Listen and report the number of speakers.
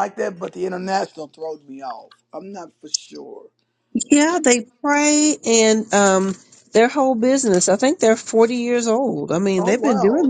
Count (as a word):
two